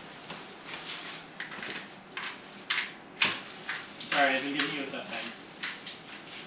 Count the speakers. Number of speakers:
one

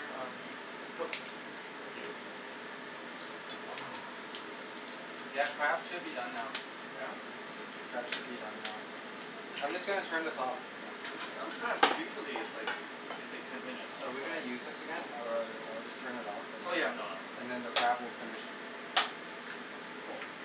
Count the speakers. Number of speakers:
two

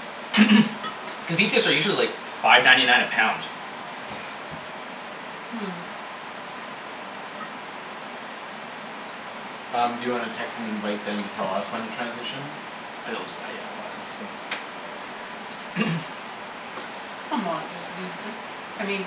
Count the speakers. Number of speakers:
three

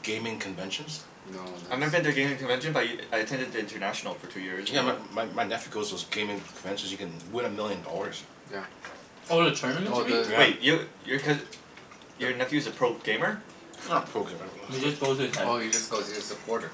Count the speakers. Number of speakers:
four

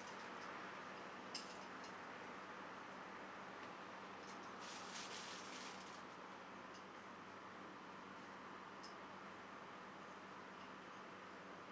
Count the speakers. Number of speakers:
zero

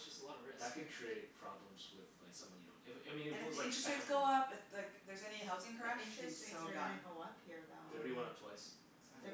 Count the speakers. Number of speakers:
four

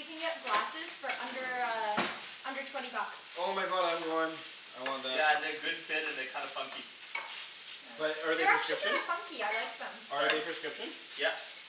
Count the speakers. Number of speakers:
three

